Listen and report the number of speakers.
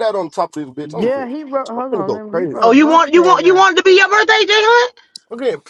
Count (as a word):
three